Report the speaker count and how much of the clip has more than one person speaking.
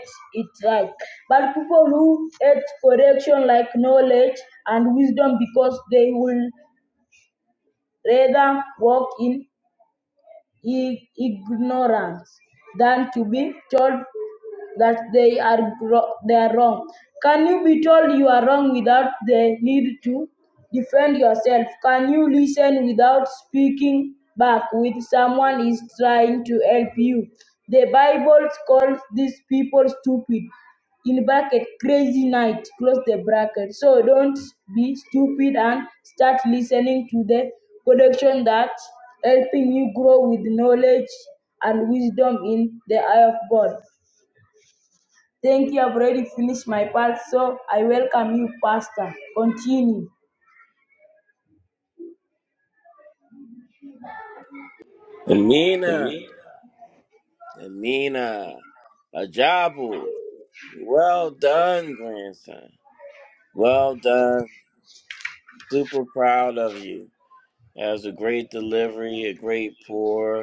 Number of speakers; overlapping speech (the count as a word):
two, no overlap